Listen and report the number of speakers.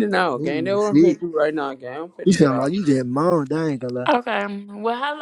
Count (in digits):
3